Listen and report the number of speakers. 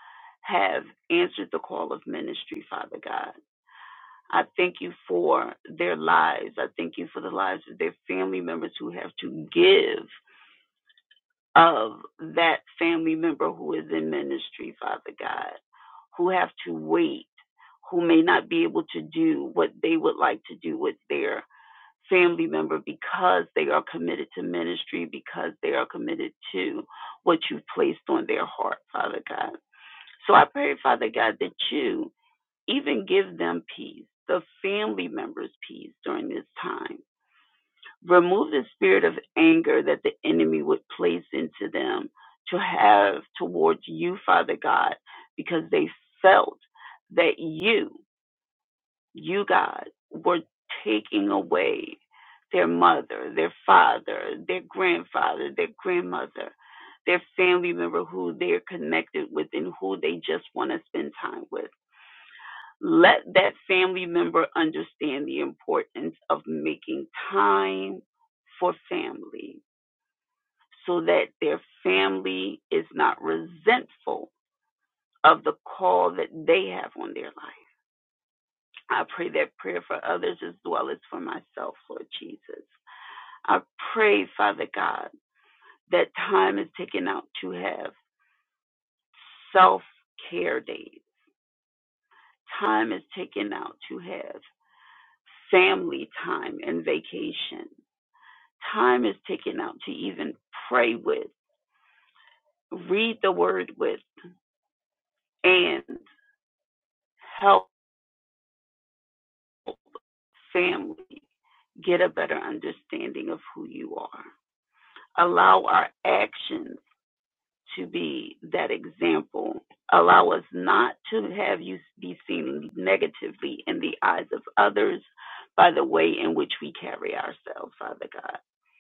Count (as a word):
one